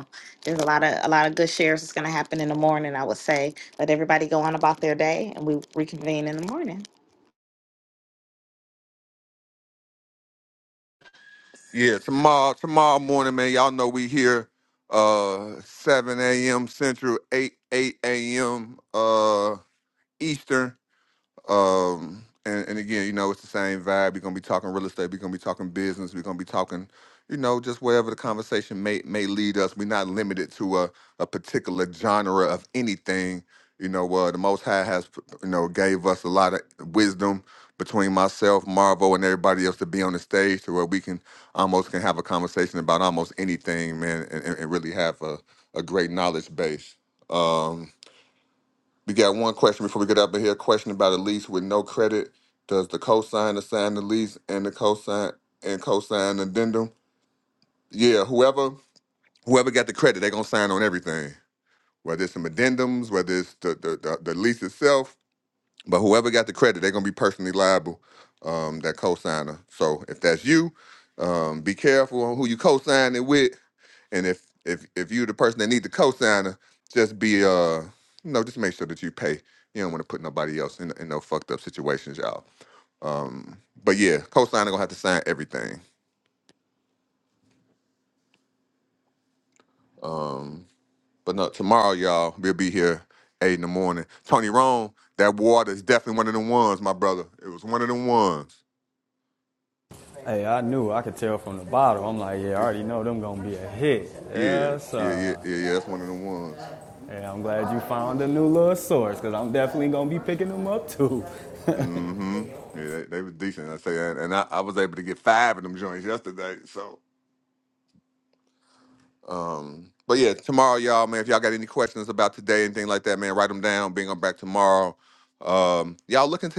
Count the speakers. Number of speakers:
3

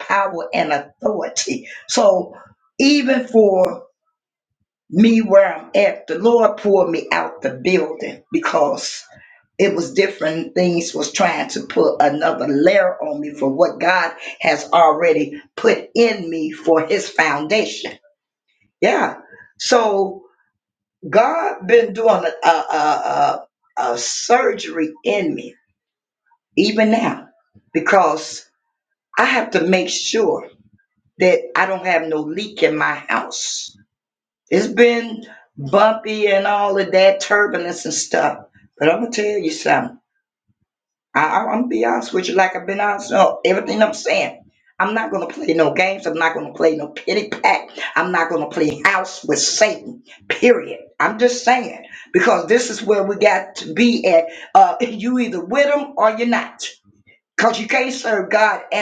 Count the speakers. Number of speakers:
1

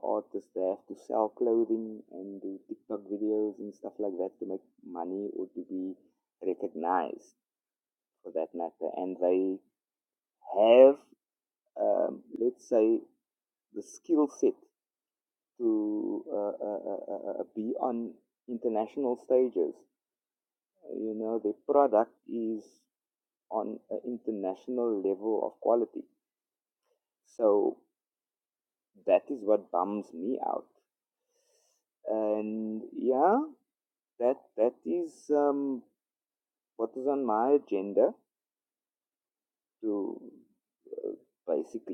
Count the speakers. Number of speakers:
1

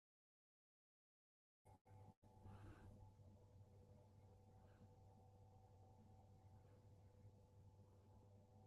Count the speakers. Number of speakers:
0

